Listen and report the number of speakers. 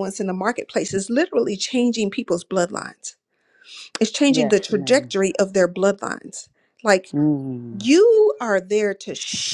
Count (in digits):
2